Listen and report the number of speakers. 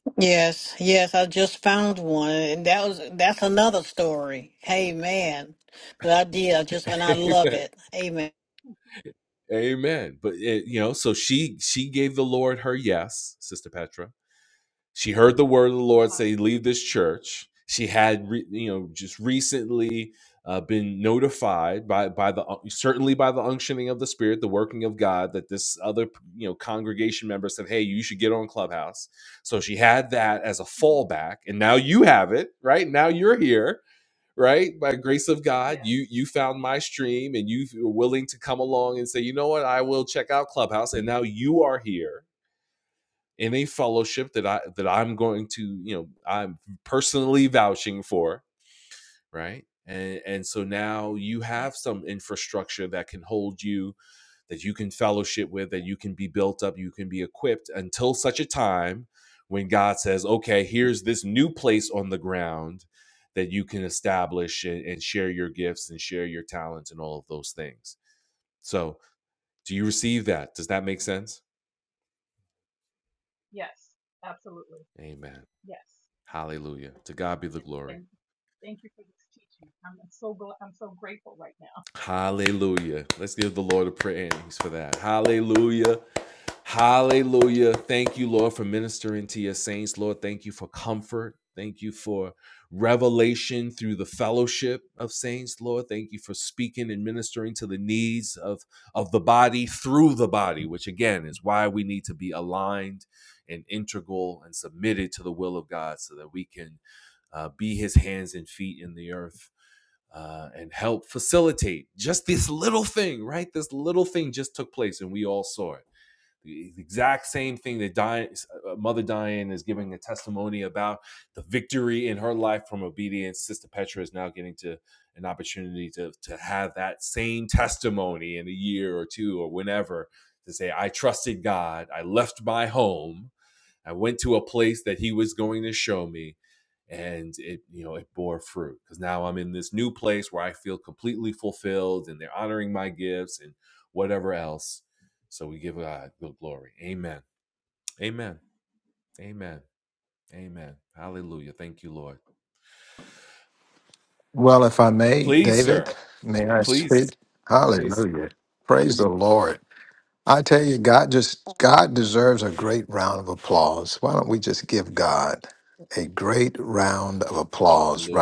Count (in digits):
4